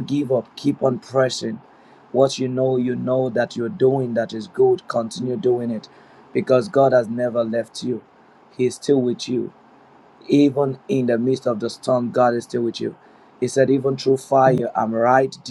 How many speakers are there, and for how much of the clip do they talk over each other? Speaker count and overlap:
1, no overlap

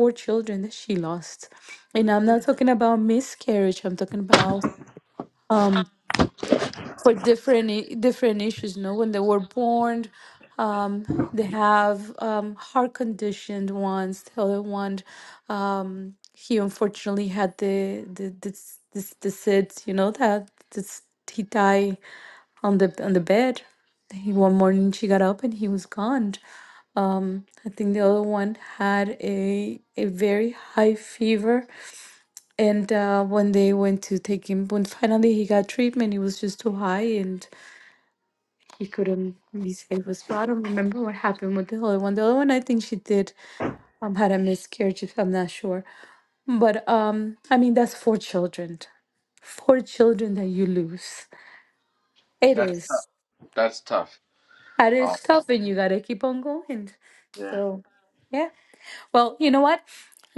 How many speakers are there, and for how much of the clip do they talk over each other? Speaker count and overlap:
2, about 1%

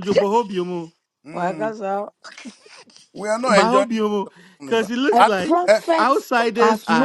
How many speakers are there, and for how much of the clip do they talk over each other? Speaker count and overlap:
3, about 35%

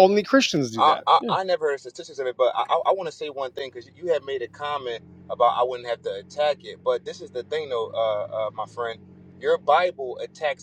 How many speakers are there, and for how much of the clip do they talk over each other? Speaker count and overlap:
2, about 5%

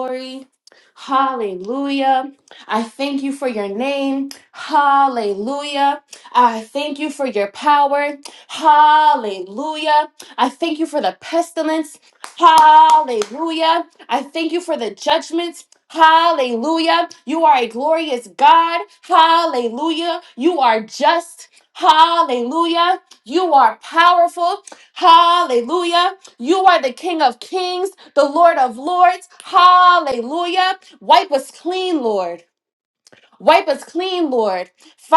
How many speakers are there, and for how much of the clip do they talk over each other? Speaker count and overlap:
1, no overlap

